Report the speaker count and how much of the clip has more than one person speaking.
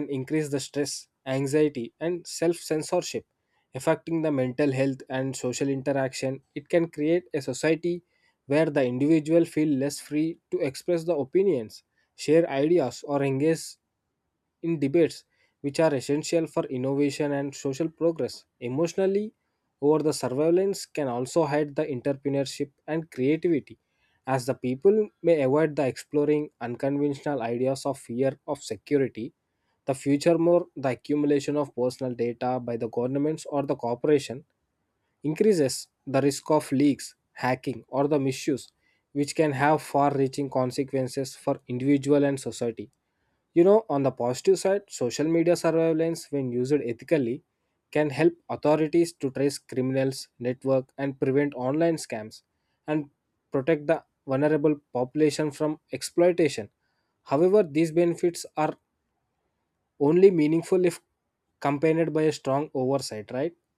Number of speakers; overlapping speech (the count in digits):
1, no overlap